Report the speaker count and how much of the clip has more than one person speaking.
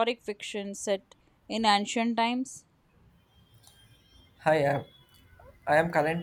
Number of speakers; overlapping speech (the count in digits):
2, no overlap